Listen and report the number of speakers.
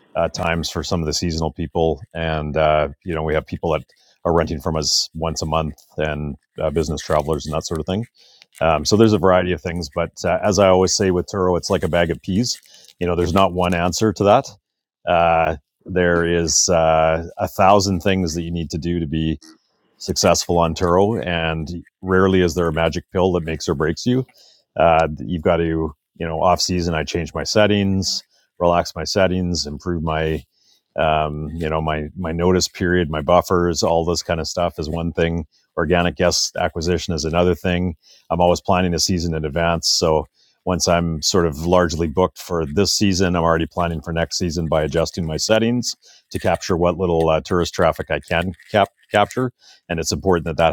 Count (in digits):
1